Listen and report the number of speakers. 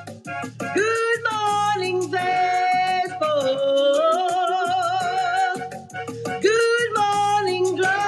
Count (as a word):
one